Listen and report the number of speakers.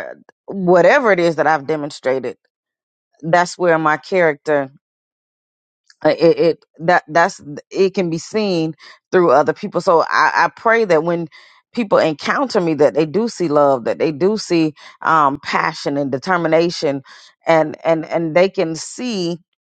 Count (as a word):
one